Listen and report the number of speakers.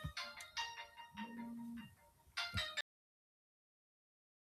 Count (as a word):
zero